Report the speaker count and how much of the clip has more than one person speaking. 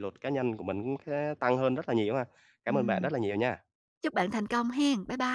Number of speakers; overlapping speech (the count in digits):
2, about 7%